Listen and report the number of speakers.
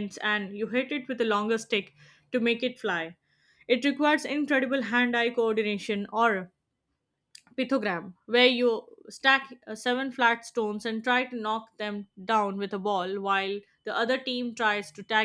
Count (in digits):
1